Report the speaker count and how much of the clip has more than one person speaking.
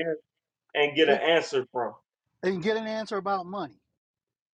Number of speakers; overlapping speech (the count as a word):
two, about 3%